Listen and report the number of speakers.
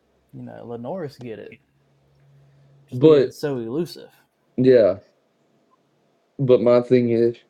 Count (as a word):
two